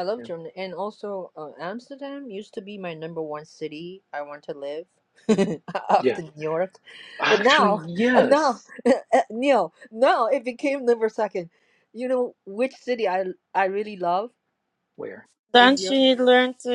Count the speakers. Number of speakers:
three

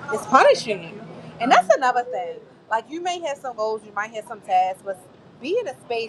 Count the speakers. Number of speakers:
one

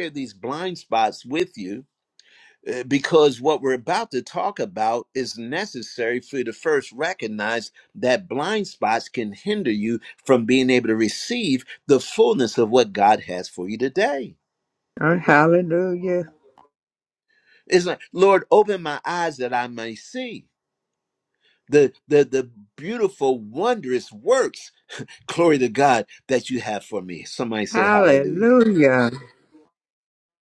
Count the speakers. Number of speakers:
two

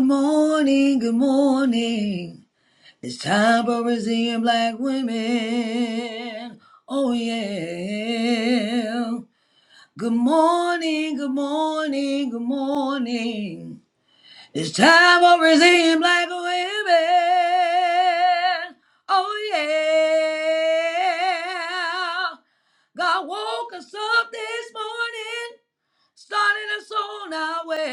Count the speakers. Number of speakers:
one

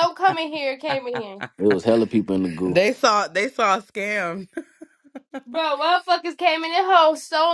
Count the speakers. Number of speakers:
three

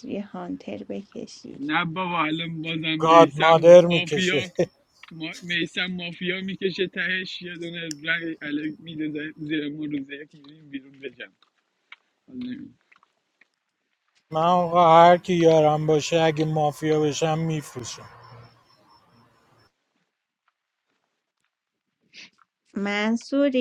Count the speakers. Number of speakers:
three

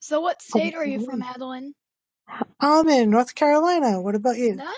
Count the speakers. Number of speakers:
two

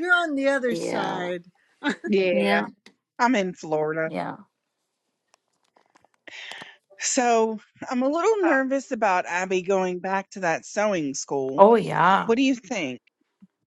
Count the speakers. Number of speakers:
three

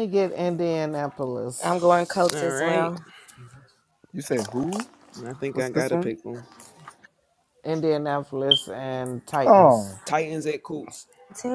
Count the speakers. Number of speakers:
four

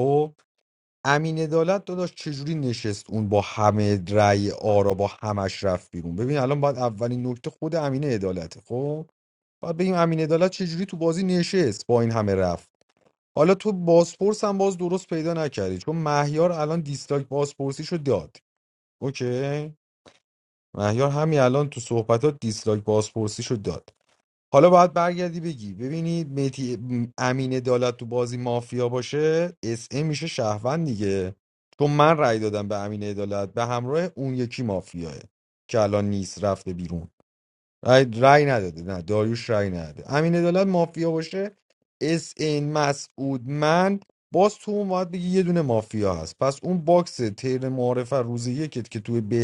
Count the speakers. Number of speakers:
one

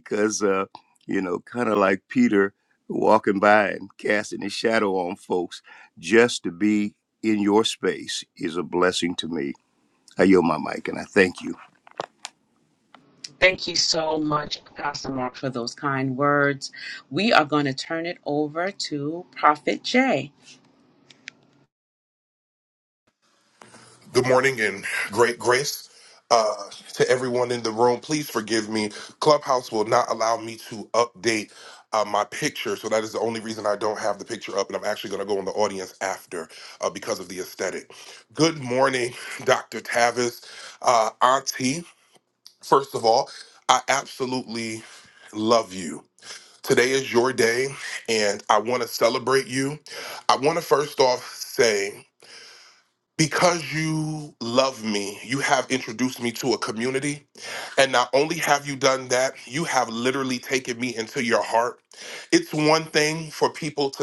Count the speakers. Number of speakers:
three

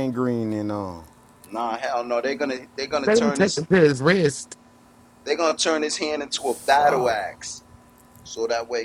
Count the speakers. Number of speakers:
three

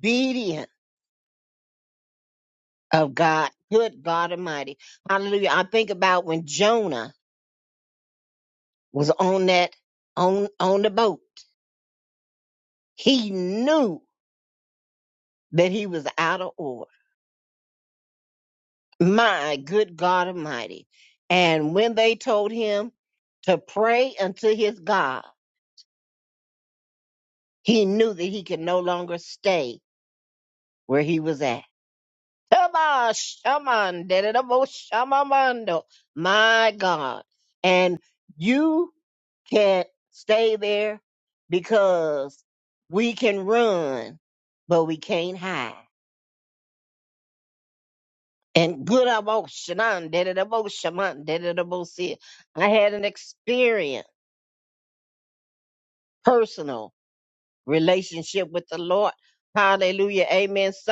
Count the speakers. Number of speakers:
one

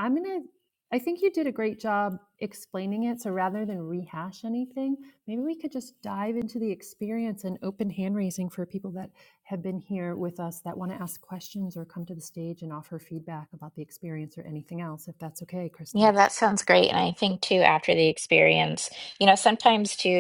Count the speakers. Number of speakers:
two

